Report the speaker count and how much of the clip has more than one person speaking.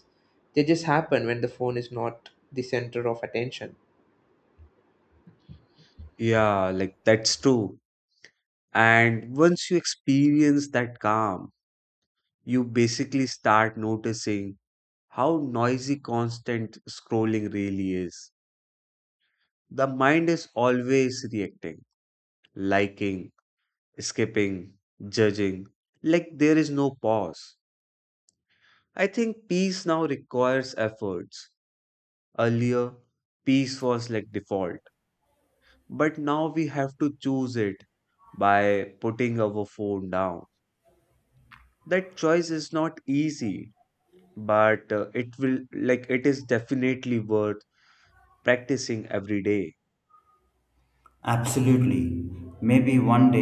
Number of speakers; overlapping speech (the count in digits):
3, no overlap